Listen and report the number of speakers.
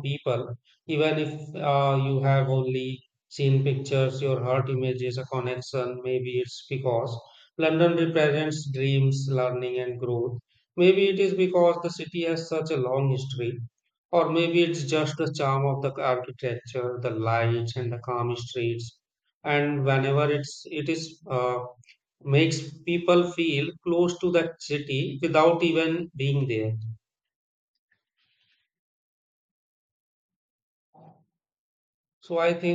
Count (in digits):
1